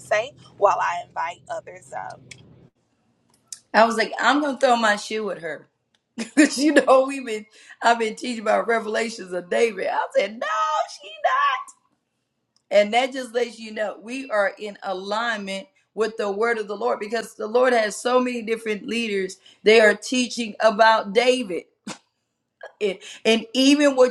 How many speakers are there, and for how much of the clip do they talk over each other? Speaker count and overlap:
two, no overlap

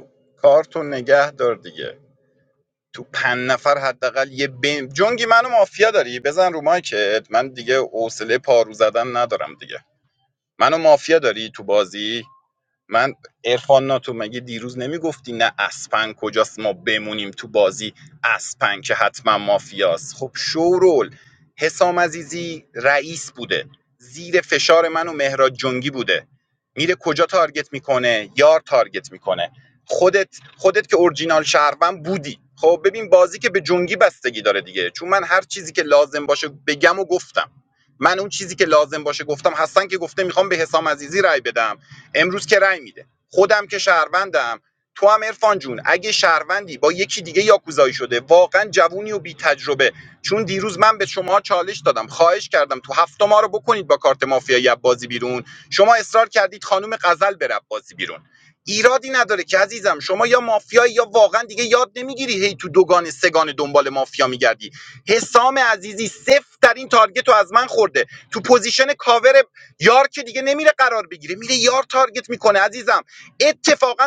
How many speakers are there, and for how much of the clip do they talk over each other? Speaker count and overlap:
one, no overlap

